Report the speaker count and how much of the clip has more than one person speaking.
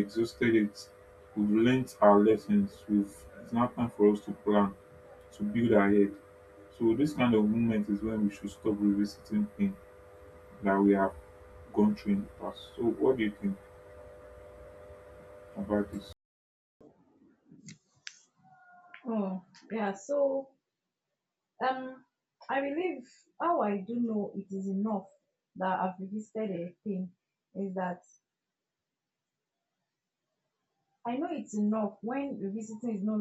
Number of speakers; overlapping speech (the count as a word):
two, no overlap